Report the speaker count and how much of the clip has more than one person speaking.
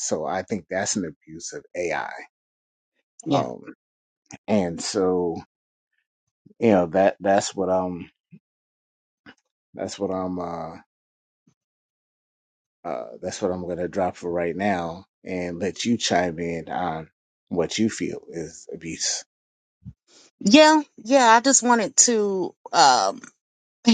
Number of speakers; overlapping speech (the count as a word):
two, no overlap